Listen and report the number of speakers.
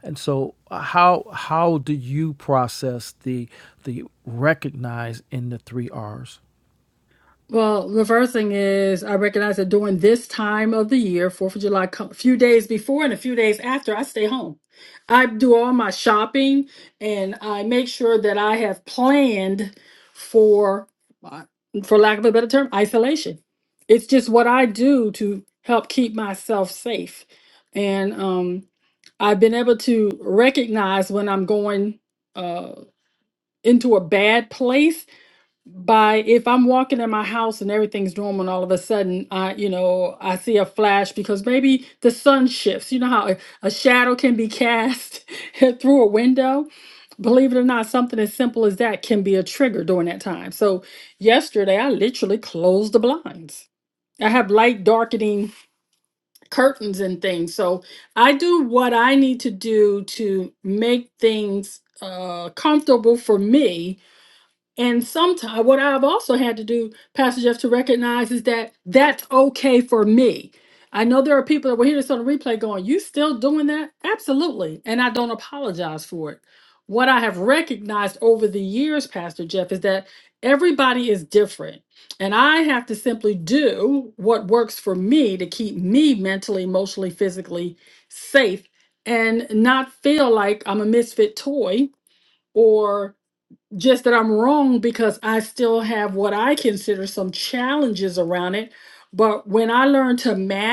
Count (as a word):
two